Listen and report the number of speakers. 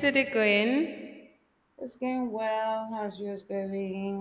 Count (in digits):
2